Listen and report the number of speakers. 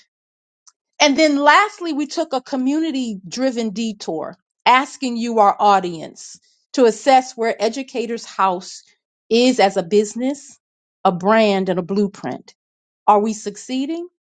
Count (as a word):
one